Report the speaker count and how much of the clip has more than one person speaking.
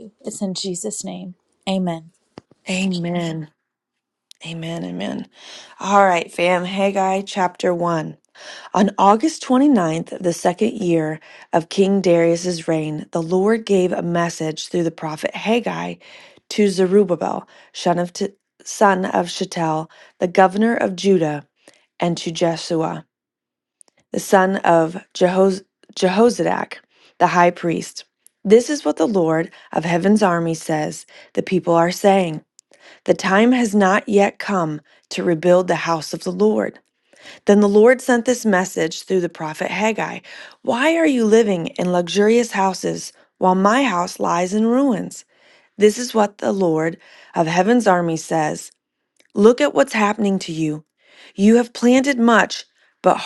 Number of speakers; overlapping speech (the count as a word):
two, no overlap